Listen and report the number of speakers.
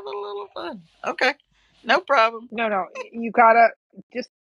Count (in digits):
2